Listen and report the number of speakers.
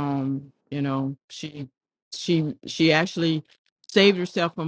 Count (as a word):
one